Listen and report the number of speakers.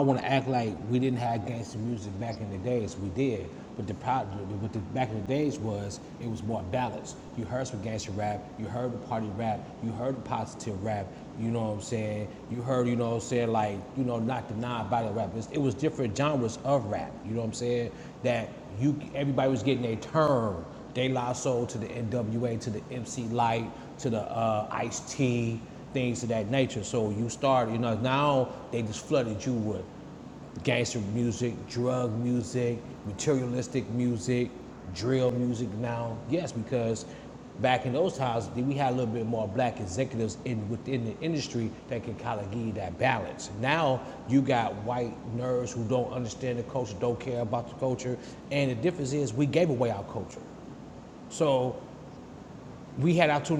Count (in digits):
1